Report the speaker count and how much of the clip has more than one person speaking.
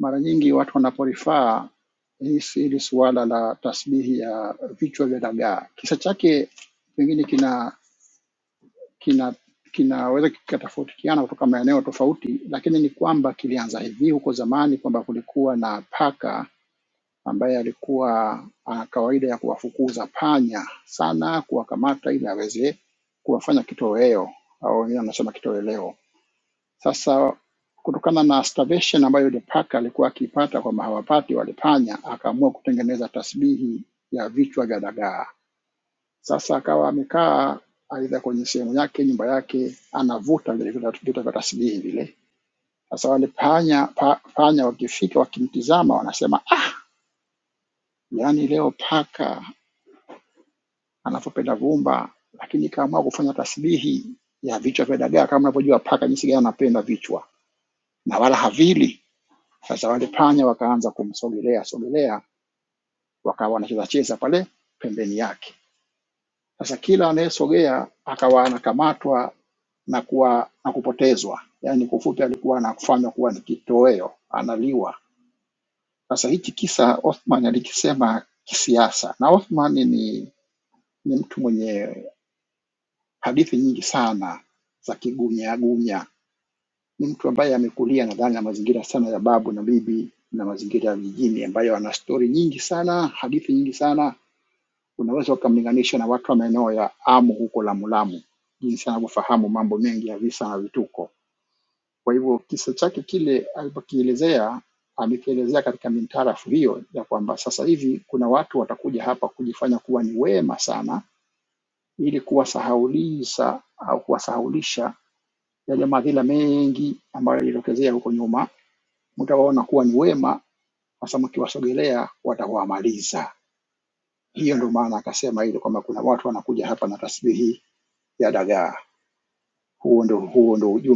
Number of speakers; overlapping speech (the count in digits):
1, no overlap